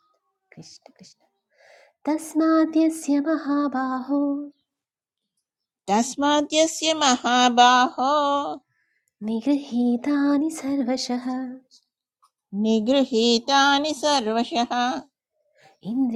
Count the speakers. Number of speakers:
2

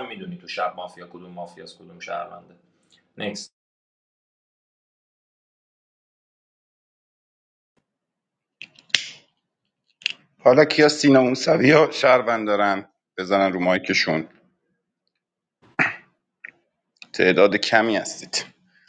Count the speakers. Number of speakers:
2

